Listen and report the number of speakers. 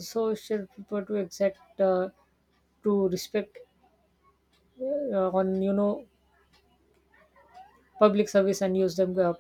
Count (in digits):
1